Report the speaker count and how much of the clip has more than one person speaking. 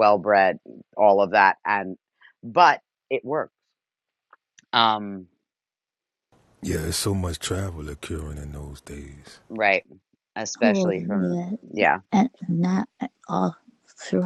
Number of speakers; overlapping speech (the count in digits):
3, about 6%